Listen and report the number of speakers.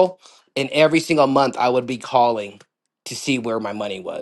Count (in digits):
1